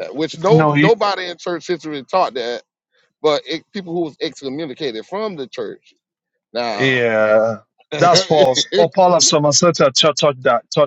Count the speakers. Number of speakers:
2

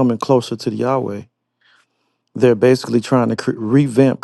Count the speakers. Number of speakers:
1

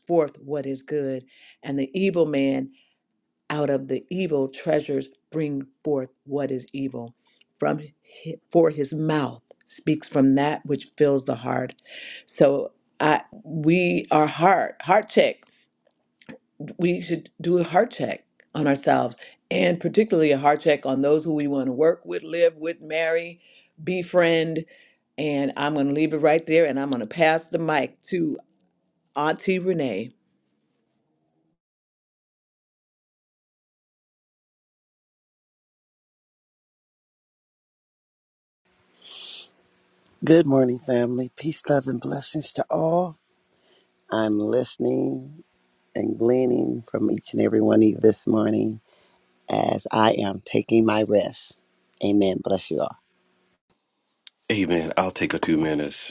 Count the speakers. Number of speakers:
3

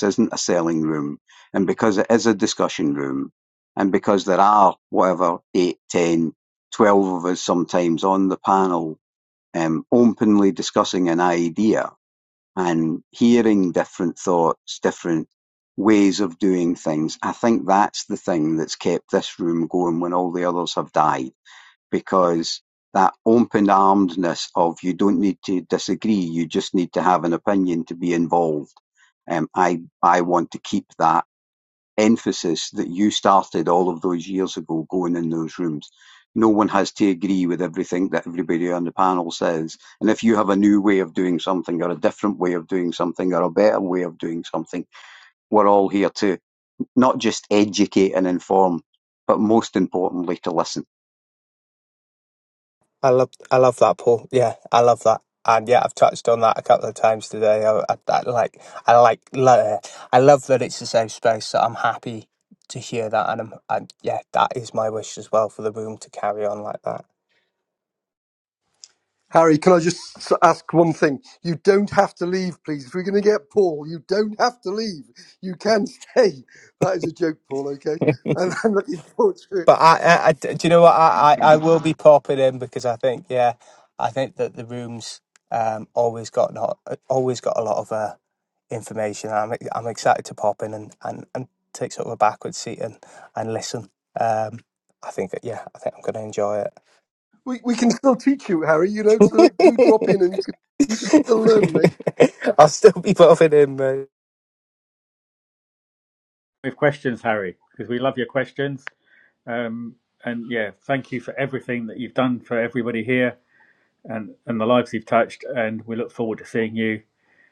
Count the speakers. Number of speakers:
4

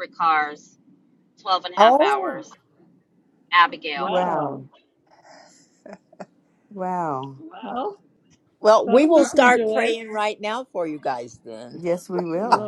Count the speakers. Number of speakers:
4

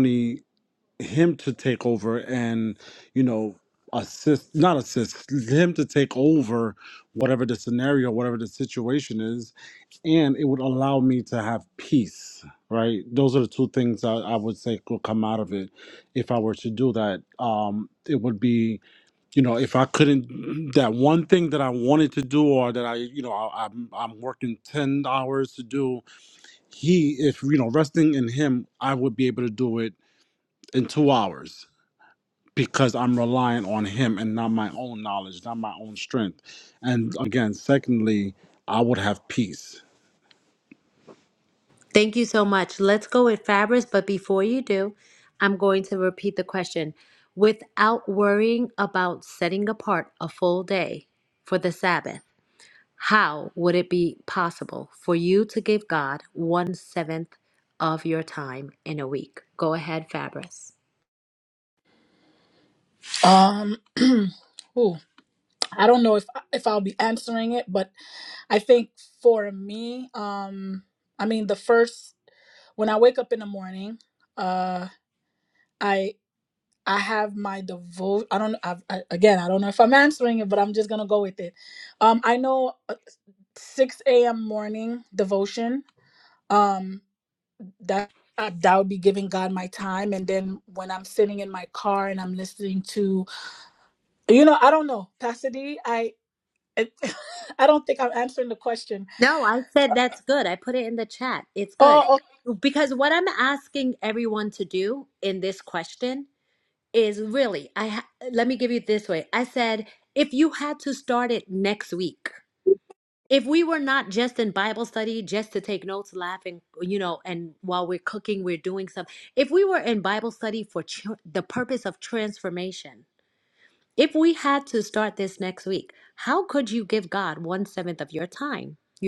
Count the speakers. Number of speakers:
3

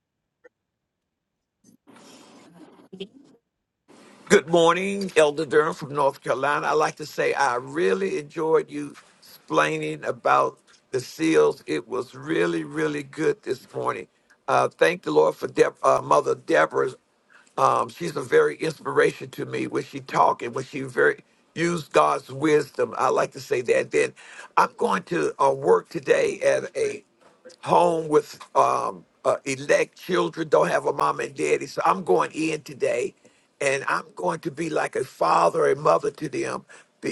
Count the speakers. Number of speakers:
1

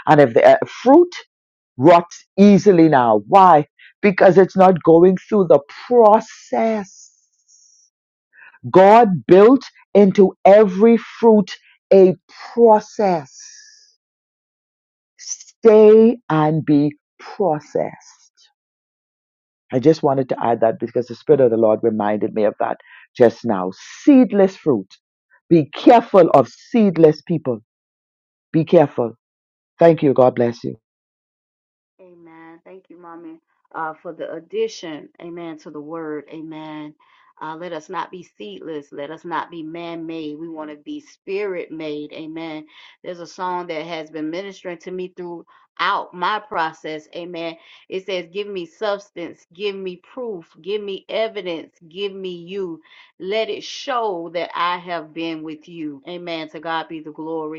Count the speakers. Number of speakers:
2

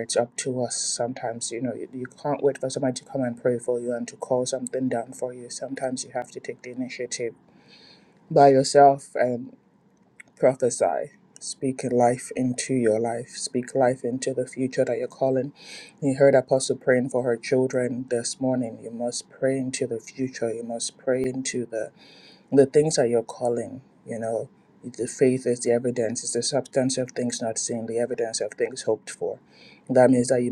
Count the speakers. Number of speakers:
1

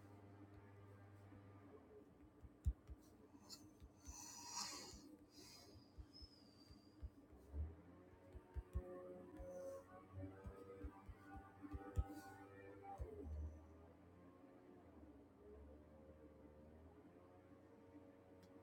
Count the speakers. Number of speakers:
0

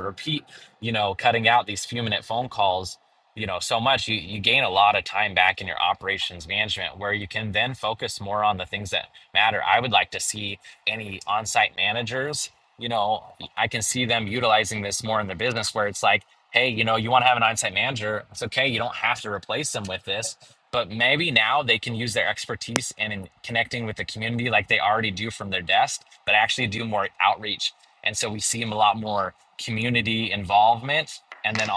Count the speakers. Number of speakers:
1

